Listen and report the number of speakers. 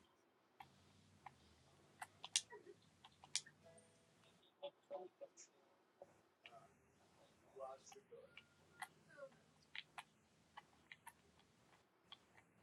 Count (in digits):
0